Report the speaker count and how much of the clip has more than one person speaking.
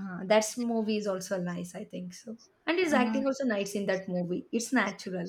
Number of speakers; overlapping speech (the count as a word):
one, no overlap